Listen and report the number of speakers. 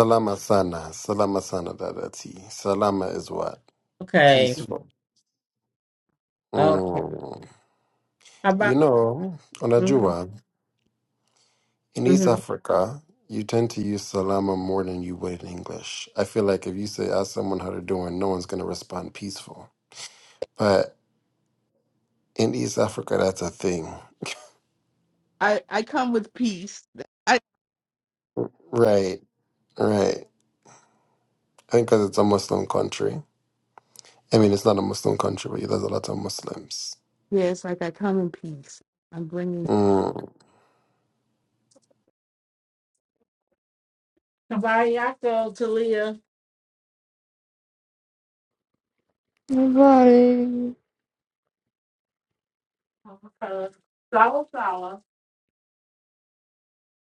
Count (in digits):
4